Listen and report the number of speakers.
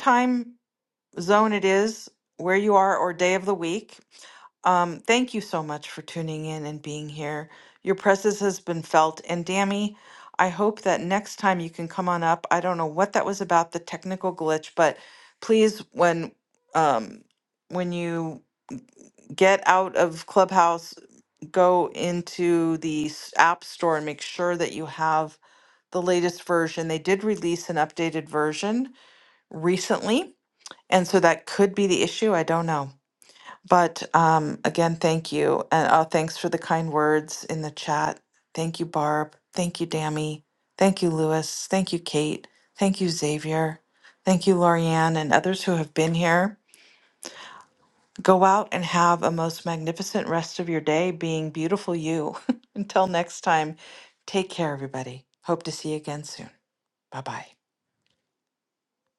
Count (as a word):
one